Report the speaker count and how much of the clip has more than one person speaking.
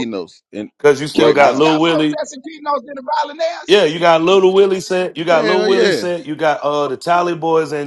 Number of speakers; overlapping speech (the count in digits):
3, about 23%